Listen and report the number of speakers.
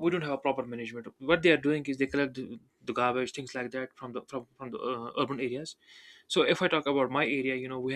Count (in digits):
1